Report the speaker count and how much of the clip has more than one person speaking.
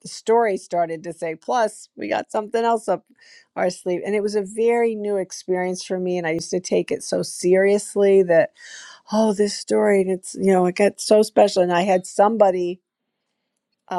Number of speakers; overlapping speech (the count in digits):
1, no overlap